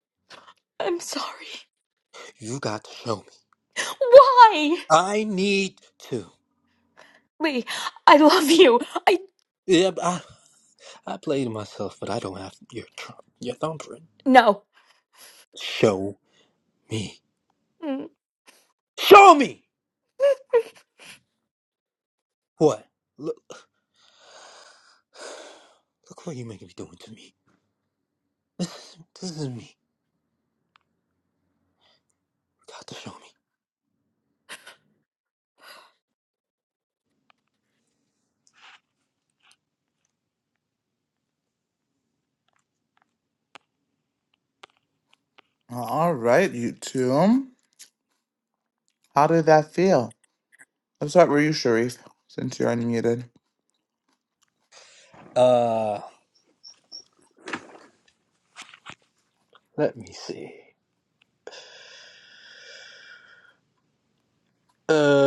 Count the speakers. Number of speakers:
3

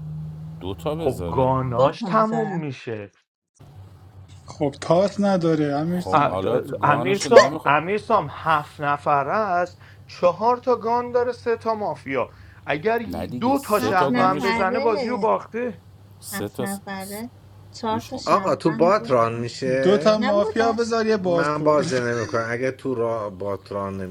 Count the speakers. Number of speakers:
5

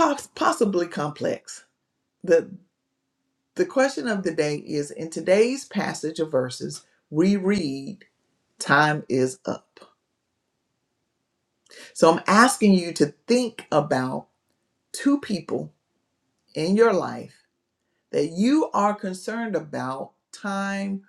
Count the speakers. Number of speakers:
1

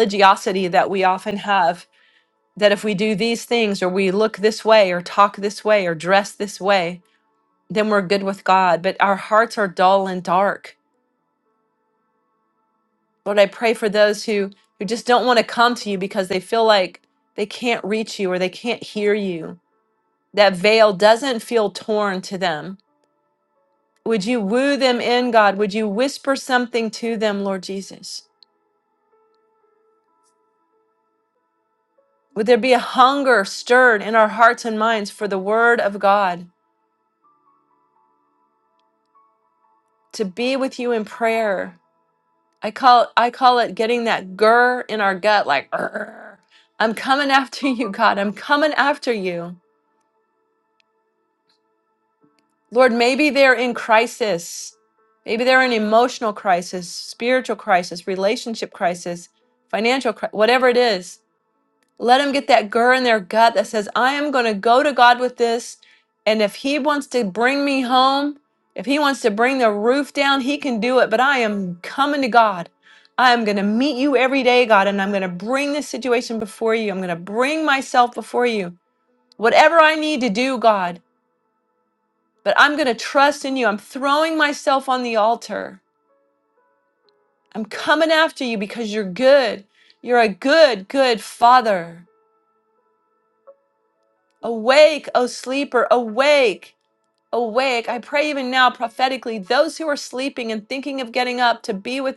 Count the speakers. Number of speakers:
1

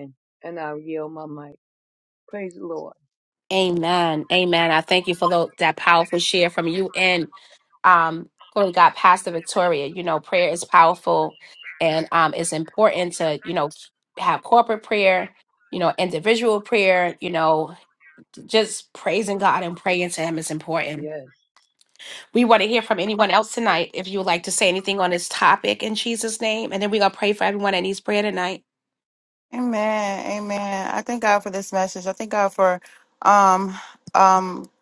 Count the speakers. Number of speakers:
3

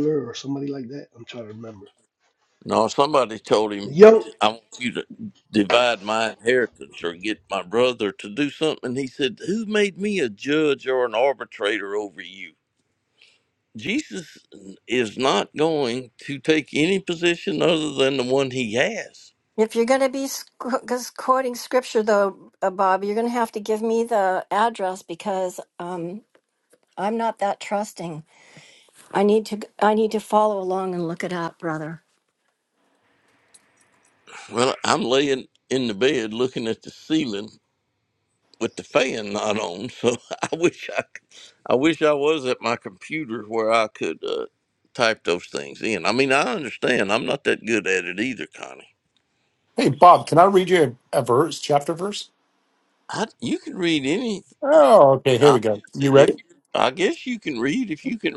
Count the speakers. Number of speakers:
4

